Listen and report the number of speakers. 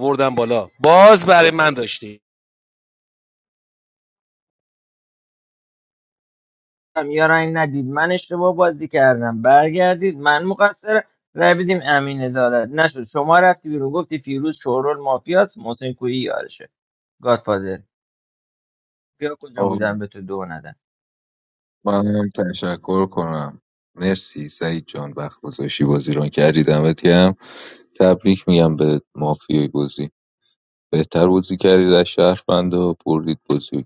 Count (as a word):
three